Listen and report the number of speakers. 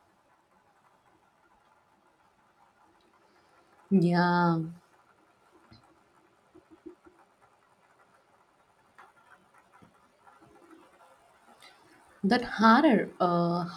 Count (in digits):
1